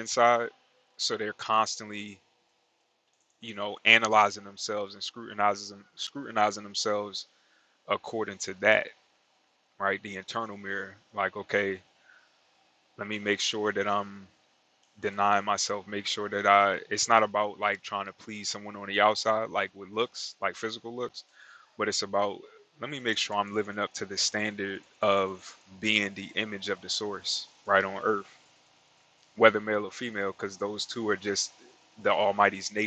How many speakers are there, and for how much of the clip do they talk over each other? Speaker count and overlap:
one, no overlap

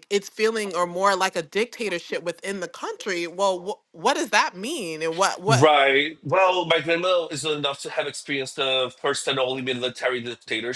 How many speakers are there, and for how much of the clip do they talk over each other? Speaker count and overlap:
two, about 1%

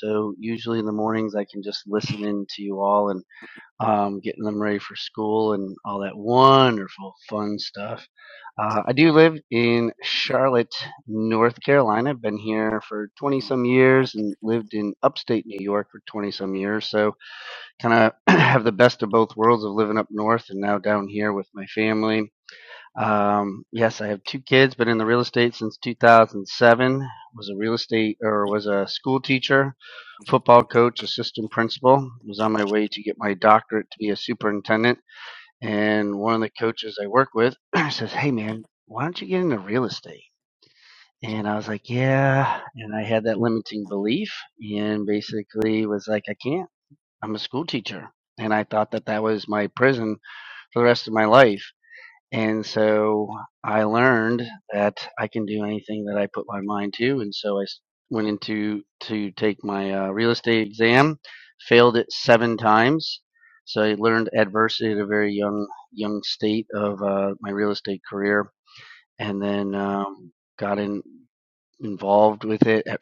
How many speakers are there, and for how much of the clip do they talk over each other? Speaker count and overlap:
one, no overlap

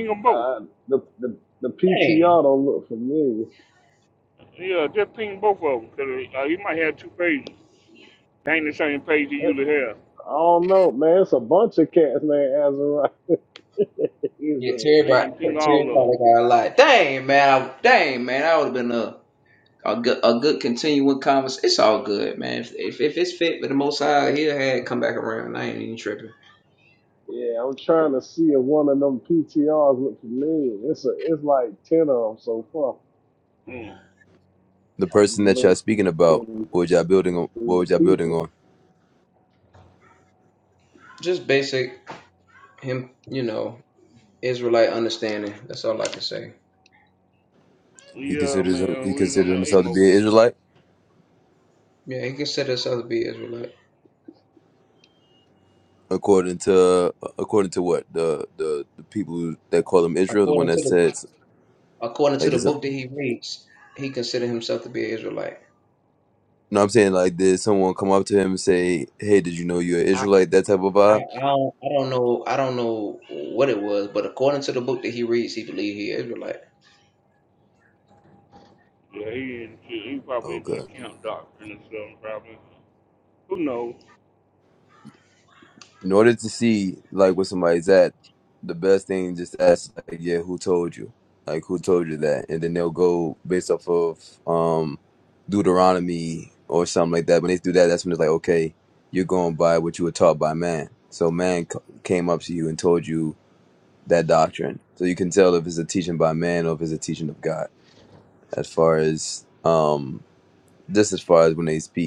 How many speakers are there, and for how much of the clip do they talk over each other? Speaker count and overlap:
four, about 6%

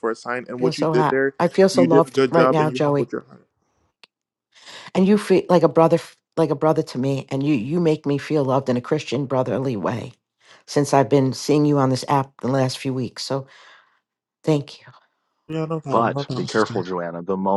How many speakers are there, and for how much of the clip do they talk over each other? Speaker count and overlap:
three, about 17%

